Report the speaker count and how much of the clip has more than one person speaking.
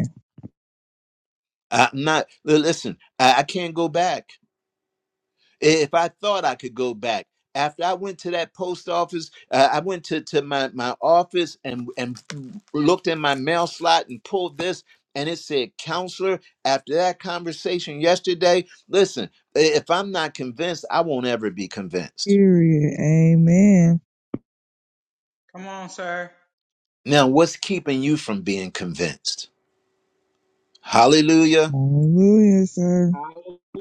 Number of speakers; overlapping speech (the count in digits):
3, under 1%